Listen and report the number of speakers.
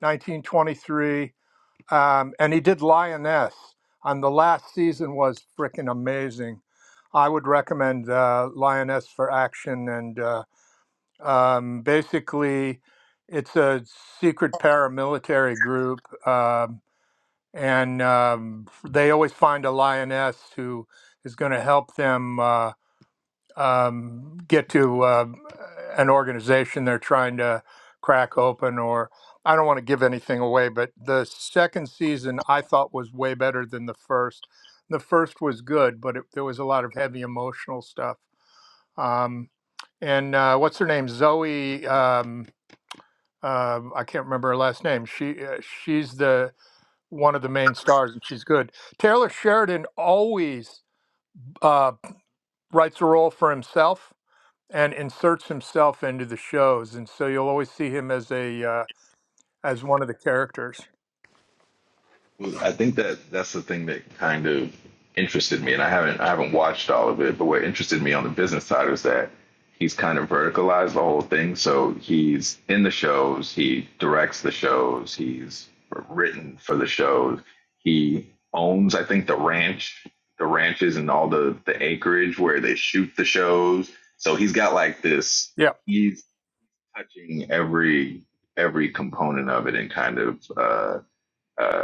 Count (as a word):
two